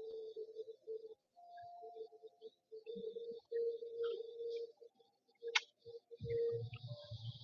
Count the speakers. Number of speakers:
0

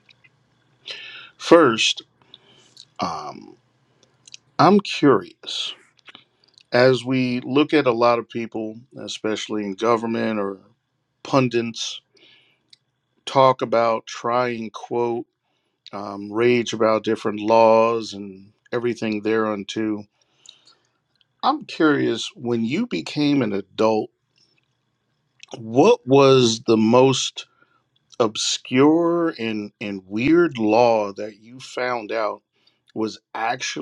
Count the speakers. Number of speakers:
1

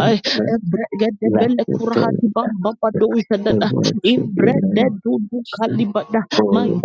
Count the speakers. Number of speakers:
2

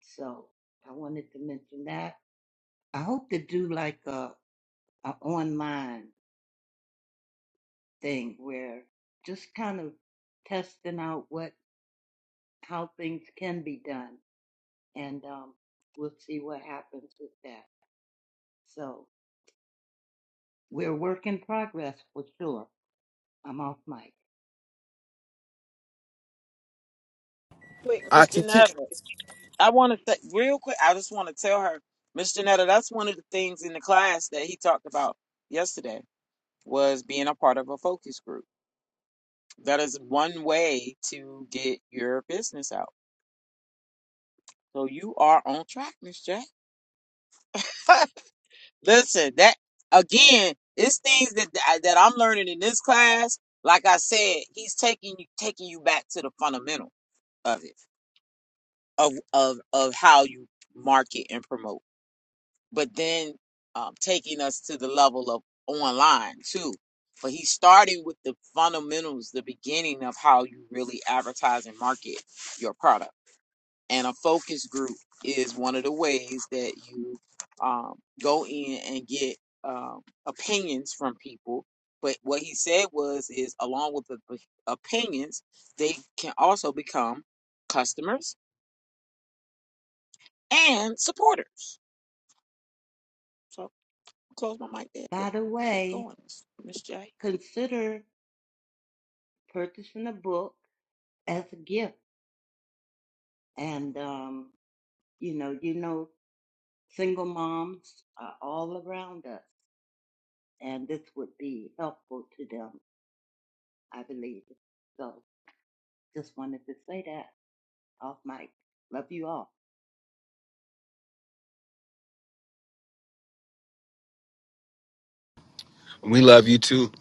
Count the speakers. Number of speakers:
3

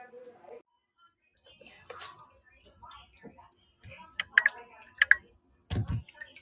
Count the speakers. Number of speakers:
0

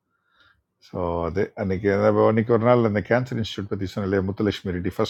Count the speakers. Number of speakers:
1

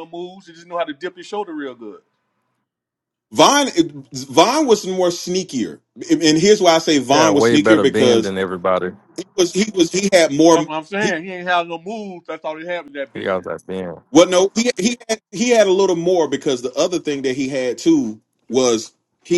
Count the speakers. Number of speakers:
3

